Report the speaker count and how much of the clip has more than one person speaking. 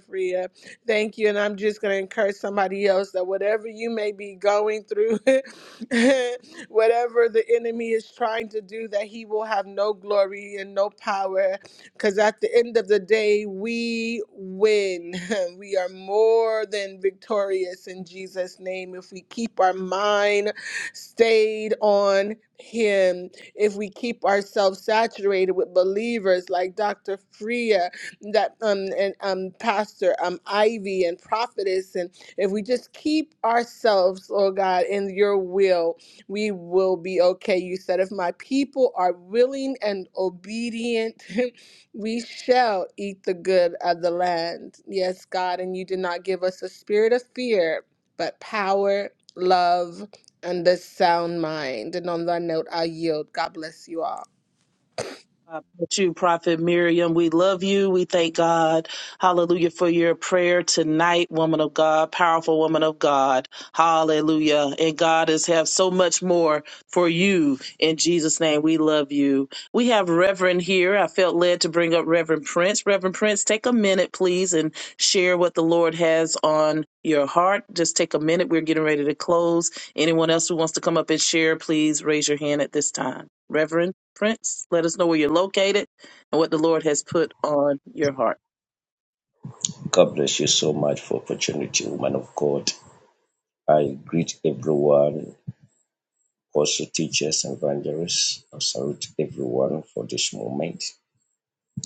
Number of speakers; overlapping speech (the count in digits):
3, no overlap